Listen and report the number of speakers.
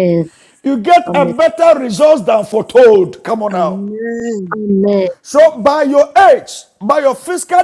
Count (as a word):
three